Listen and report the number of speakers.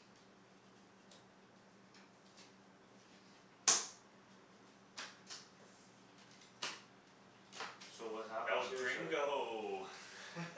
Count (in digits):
2